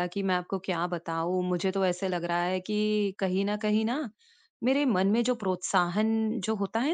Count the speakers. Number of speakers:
one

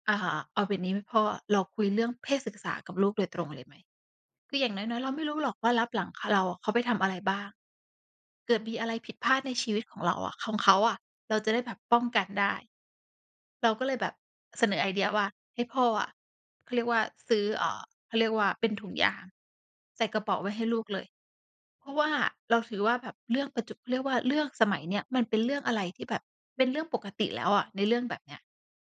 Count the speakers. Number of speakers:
one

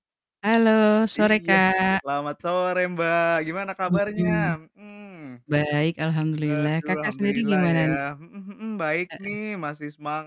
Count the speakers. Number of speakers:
two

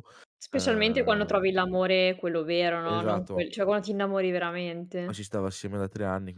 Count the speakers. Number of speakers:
two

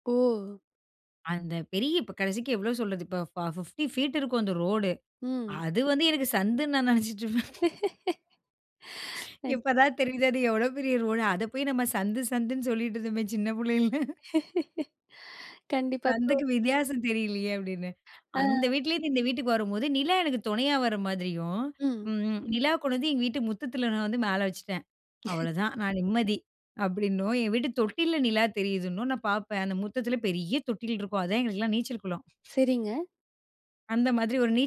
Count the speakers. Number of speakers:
two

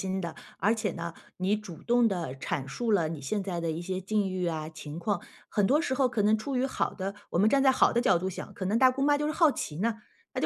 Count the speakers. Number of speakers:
one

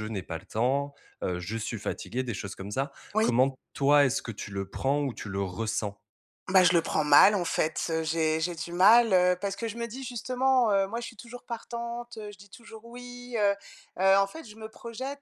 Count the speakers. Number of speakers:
two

